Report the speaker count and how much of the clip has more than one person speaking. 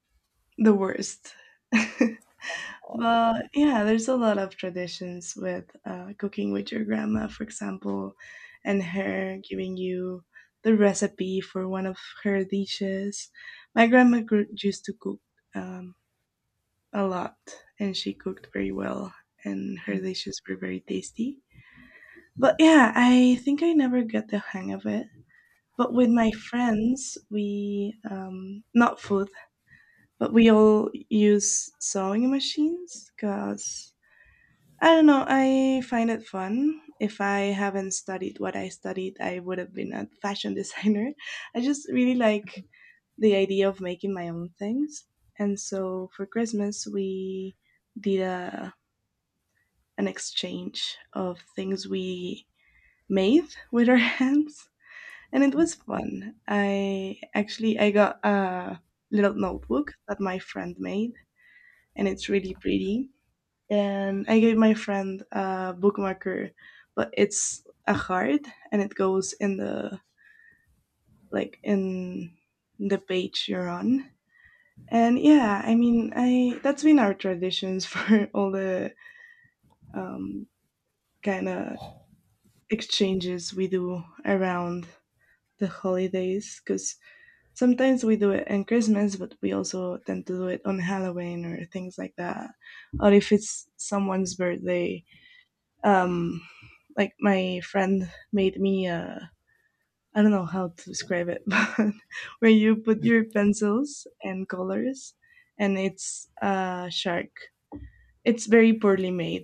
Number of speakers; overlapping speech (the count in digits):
1, no overlap